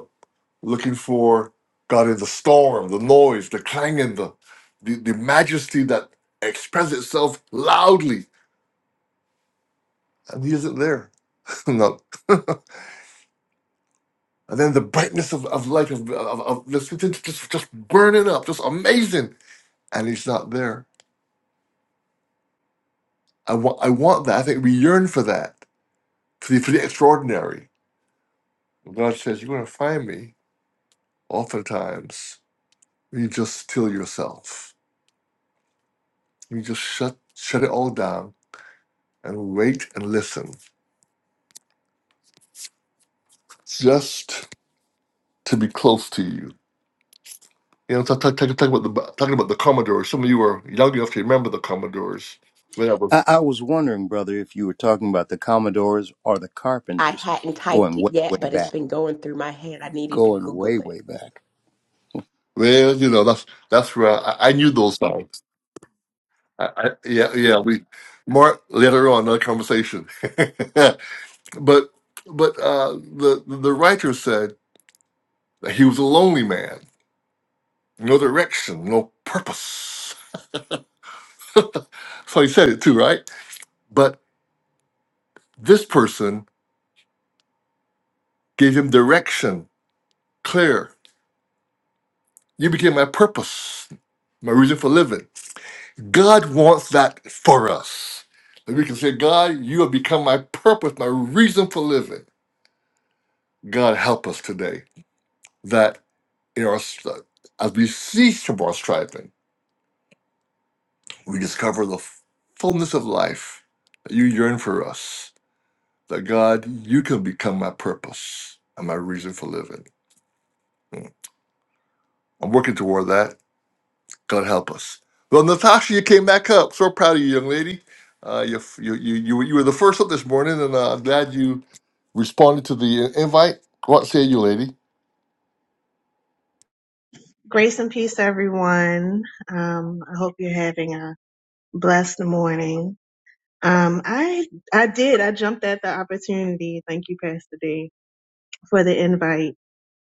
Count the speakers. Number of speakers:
4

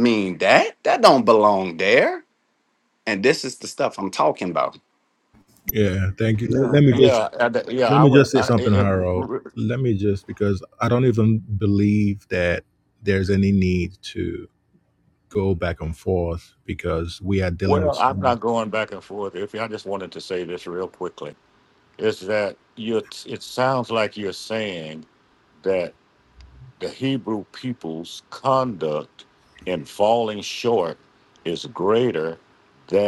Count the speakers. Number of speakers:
3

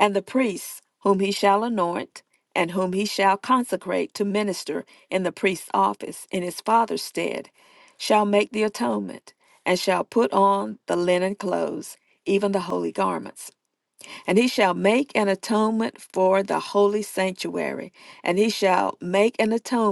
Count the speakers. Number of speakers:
1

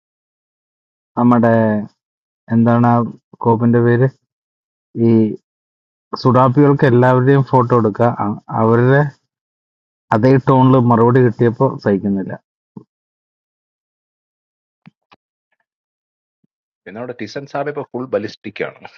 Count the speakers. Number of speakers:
2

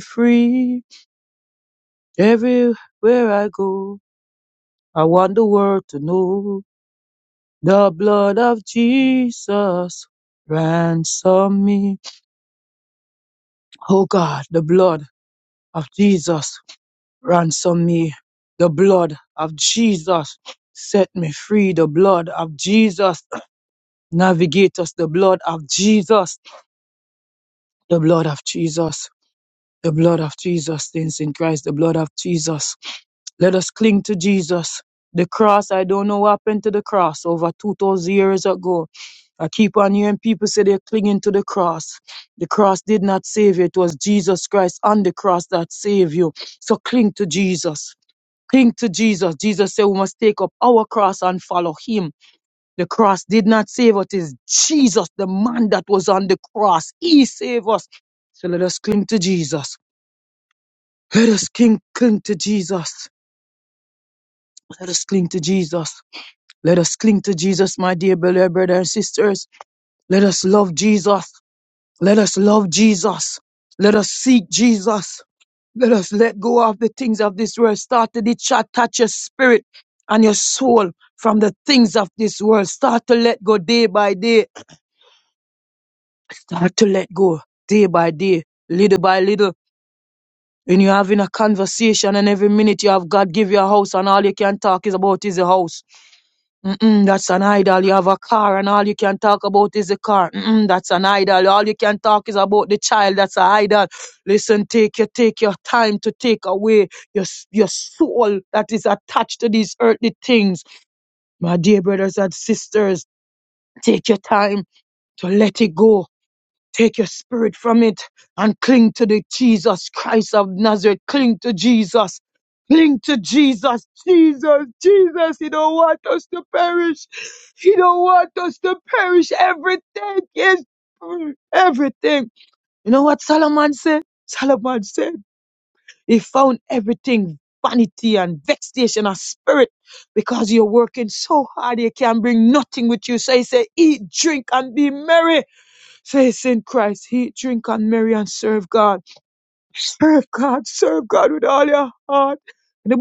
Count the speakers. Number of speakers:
1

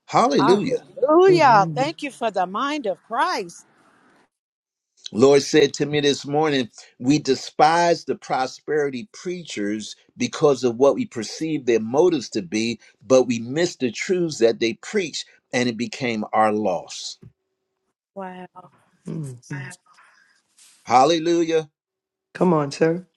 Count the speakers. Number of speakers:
3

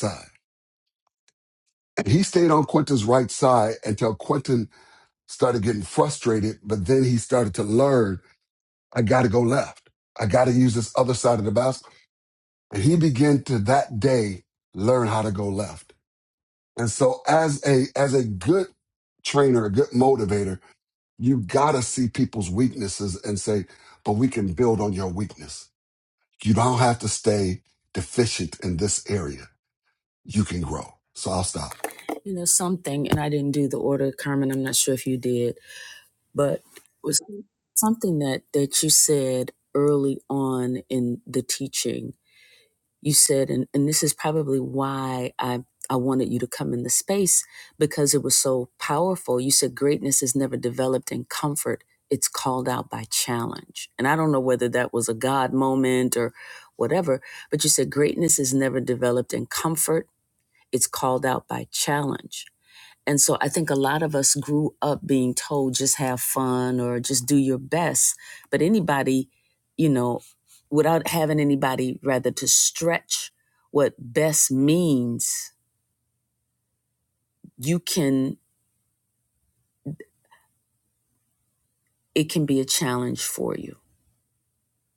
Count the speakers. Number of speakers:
2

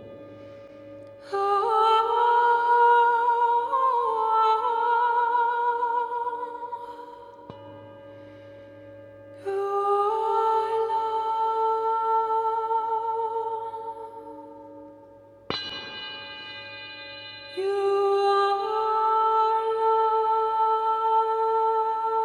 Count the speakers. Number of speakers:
1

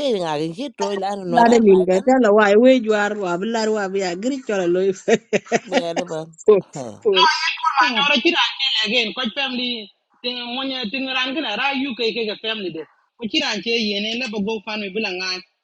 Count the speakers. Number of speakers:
3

